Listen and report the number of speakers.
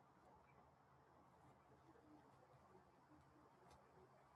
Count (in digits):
0